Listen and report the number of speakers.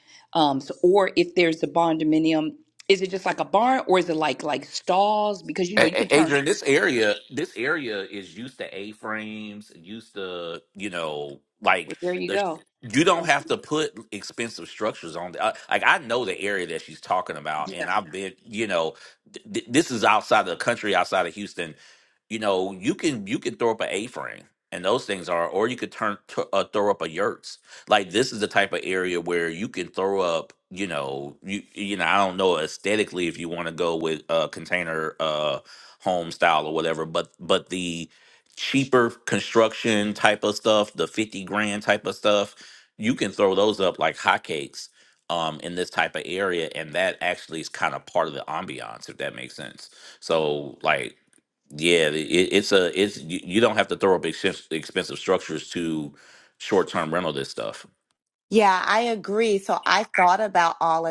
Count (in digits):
3